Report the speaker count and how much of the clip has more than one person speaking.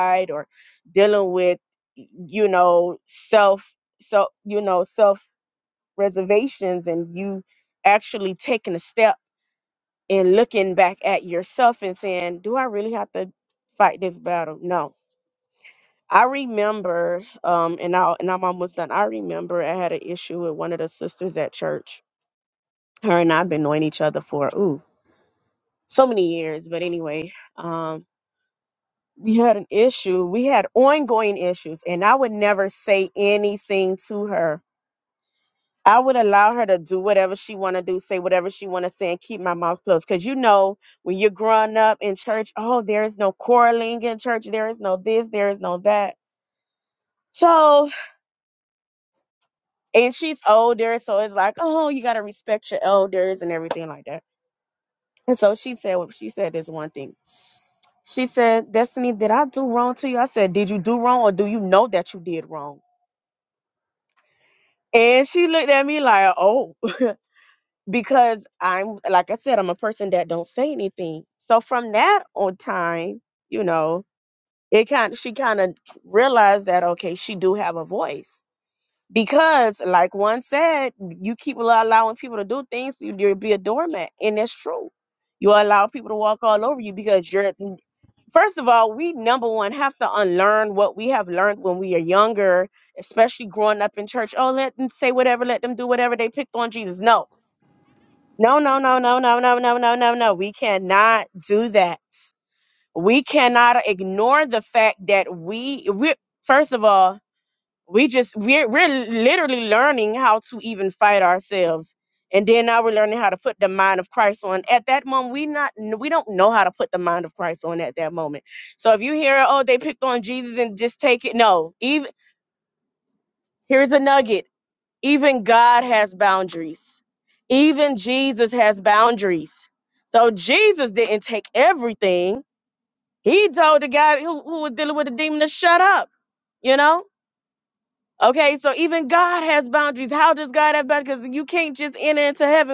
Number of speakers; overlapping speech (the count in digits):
1, no overlap